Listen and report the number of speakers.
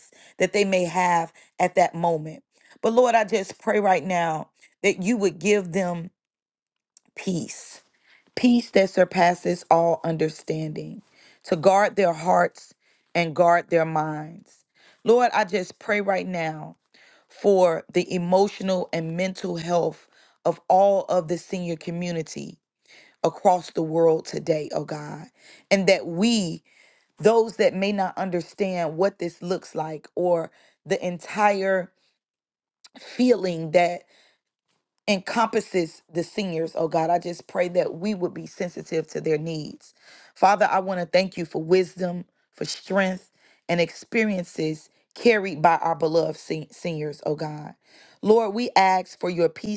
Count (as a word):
one